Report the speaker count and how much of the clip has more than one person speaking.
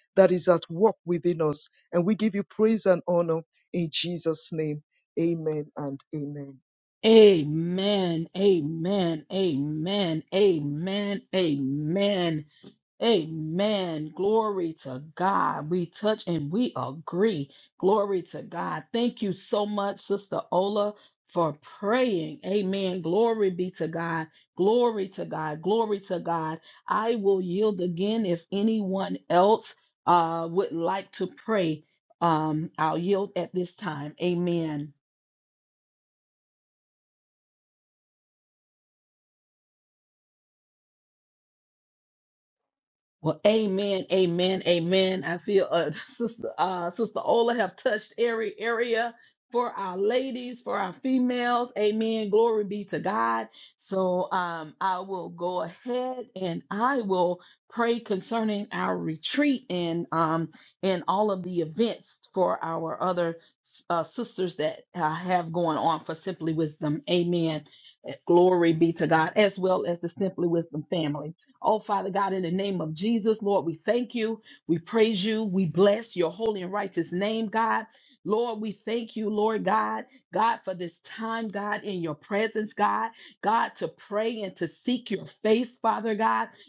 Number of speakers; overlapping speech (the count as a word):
two, no overlap